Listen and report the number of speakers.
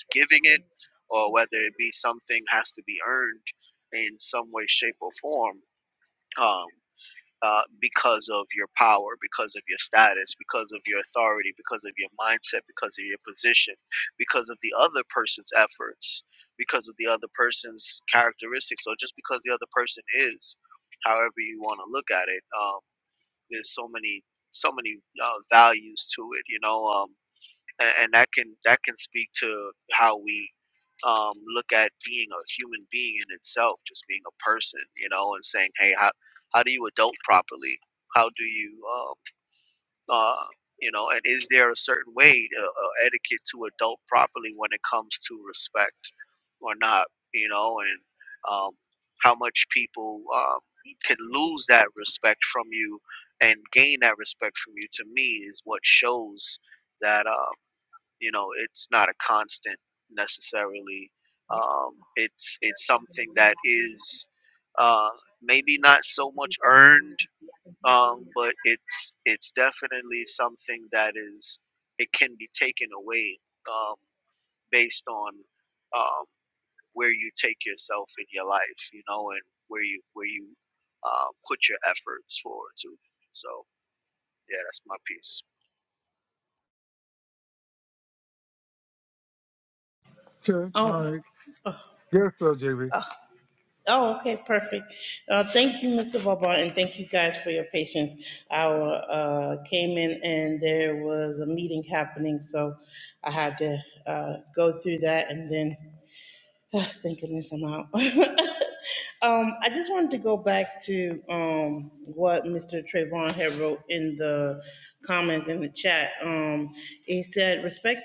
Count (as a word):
three